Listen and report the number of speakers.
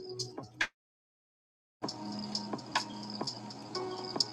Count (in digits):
0